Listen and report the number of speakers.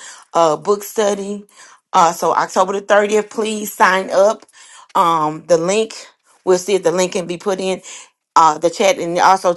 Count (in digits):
1